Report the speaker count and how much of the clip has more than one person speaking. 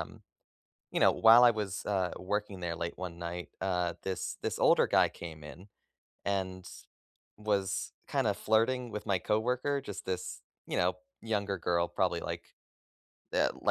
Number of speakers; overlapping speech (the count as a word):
one, no overlap